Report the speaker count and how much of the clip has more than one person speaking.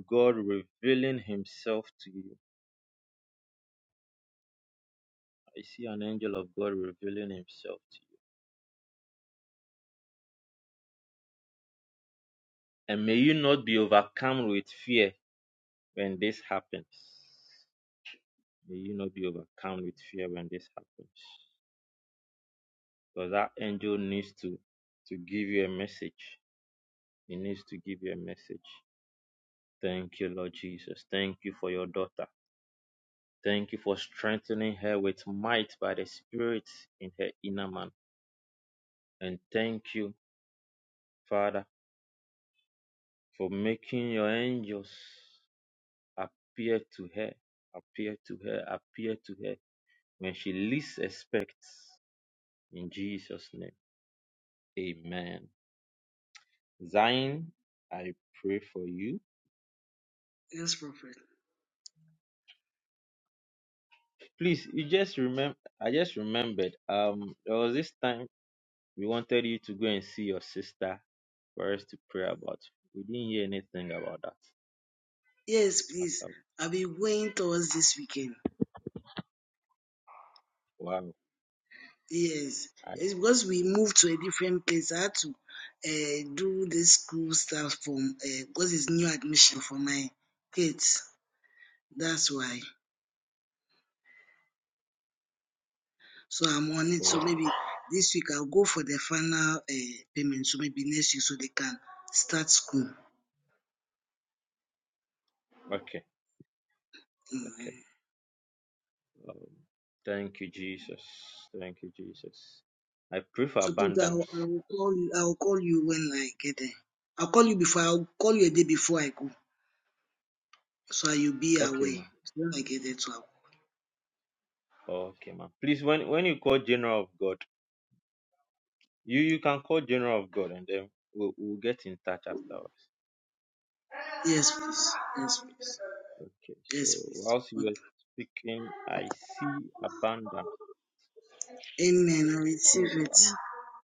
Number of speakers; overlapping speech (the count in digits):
2, about 2%